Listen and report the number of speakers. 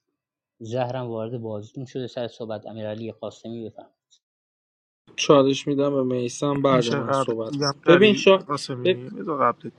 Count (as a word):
three